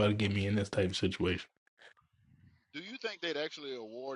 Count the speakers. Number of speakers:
2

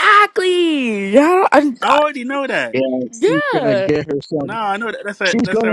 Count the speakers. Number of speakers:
3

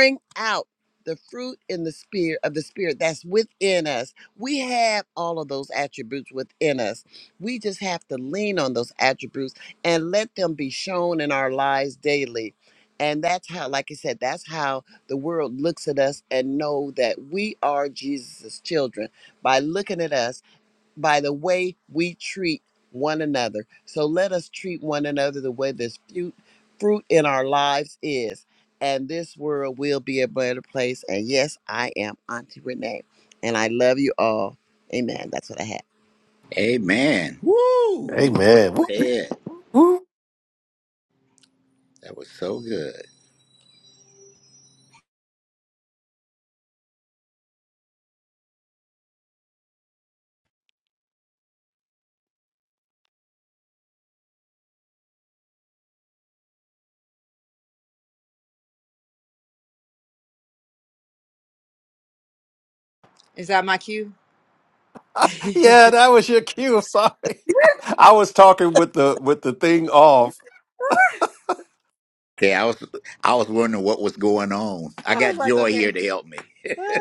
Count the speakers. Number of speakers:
4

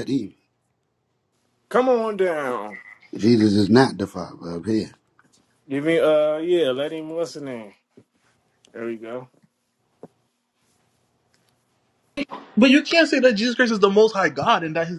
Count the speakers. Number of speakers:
3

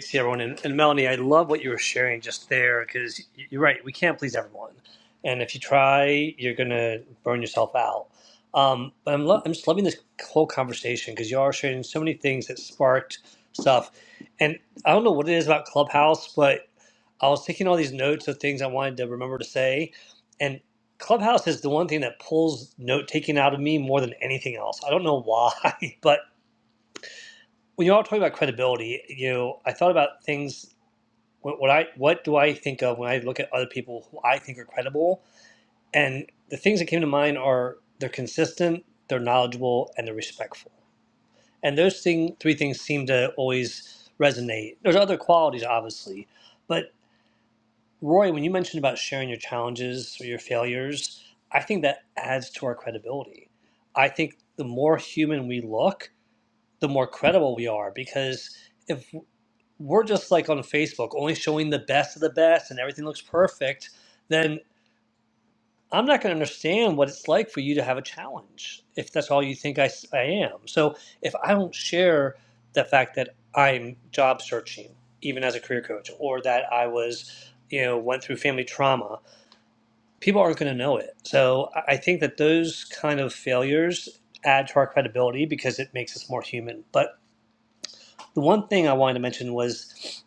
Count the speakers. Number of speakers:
1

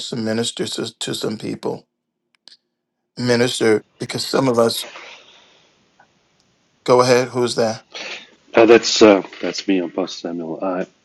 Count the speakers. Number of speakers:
2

